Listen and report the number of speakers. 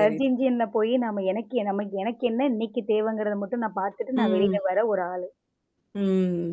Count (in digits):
2